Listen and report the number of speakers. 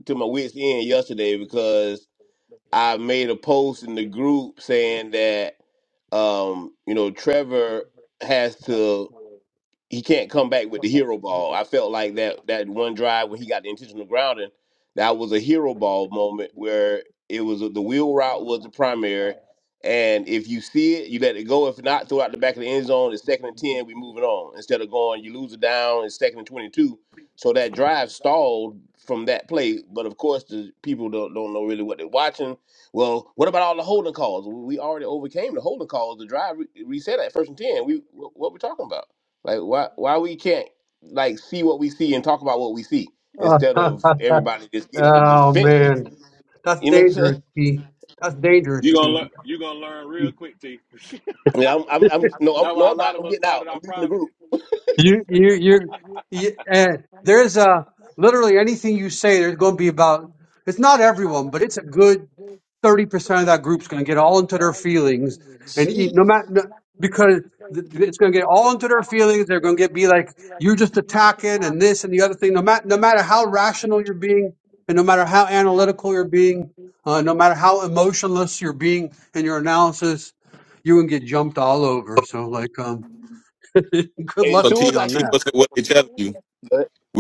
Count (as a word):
four